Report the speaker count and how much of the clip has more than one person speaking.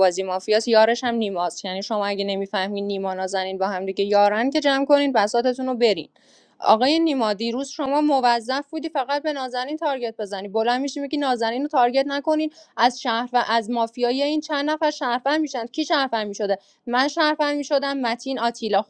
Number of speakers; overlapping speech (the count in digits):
1, no overlap